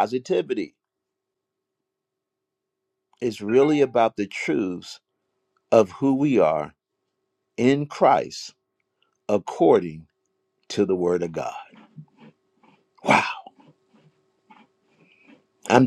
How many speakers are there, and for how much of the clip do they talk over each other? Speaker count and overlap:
1, no overlap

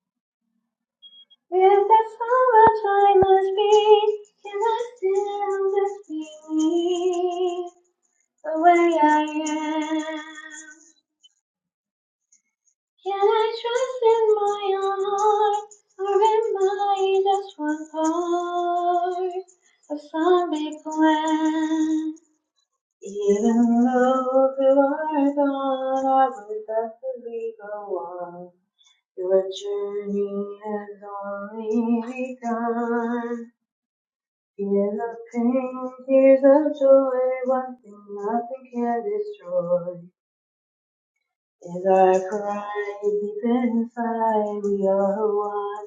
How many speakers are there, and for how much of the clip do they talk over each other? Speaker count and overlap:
1, no overlap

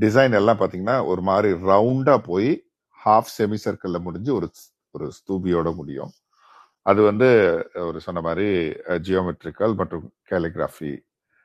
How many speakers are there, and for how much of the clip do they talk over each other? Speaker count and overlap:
1, no overlap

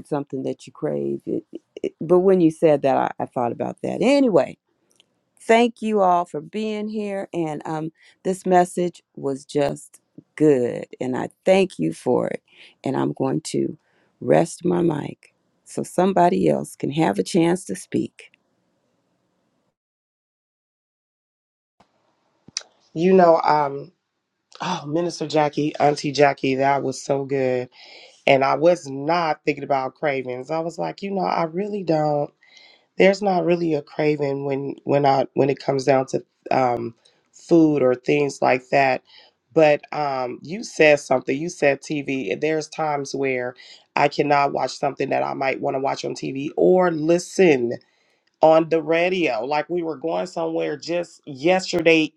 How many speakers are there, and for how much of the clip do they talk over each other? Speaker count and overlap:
2, no overlap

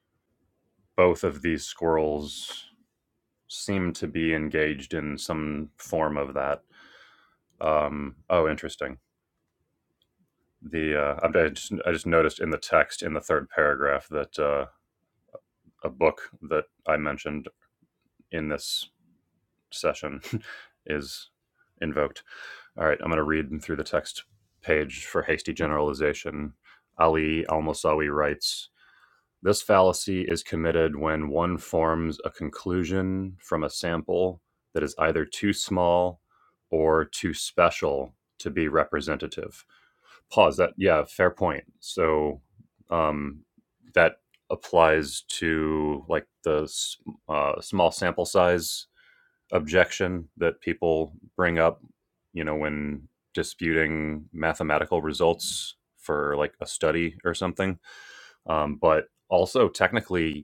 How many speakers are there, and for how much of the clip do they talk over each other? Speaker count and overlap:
1, no overlap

